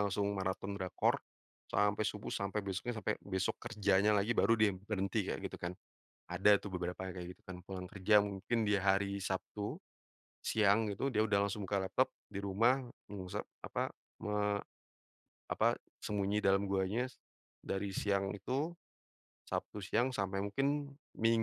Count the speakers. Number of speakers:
one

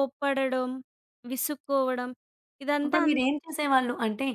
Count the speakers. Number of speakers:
two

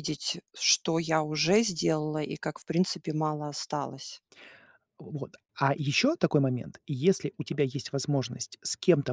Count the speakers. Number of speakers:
two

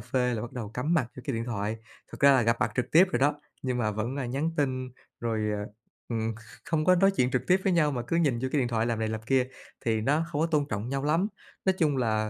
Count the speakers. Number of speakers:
one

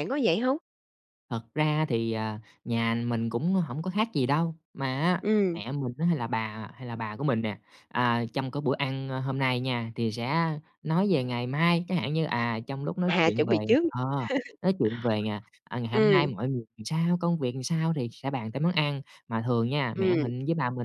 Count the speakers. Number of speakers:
two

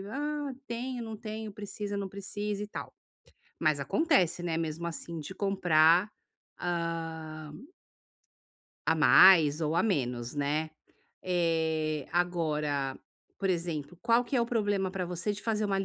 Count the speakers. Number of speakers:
one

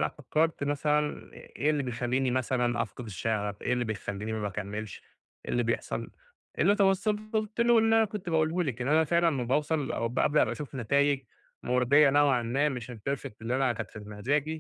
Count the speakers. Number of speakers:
one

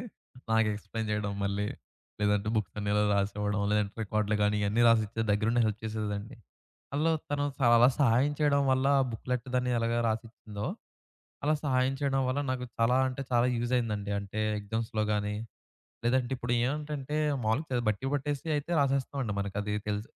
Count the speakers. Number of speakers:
one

